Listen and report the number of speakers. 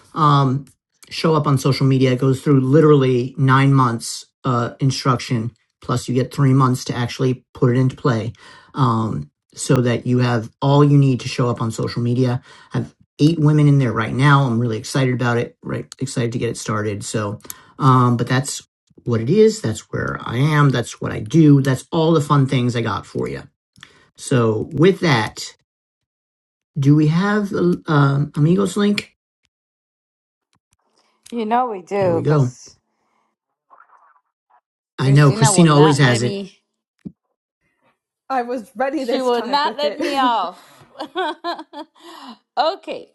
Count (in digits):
3